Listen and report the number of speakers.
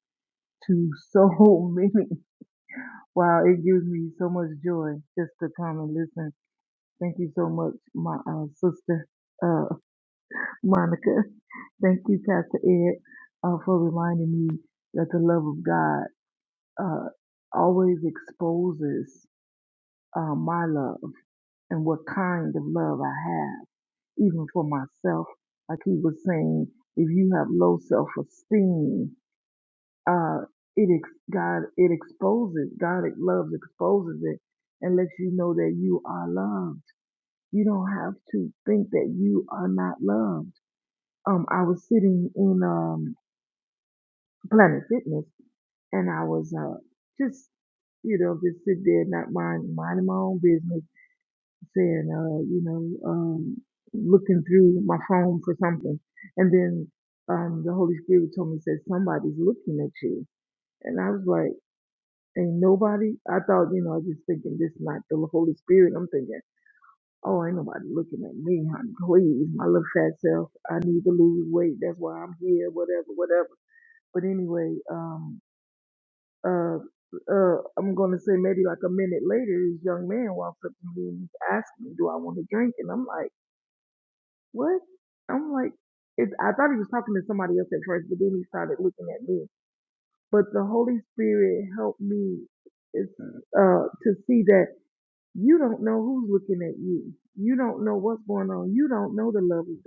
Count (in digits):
1